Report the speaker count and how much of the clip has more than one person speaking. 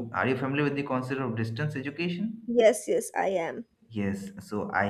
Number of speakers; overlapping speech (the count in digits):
2, about 1%